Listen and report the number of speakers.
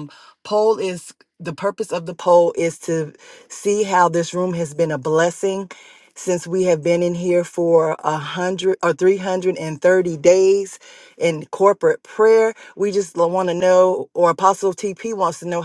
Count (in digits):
1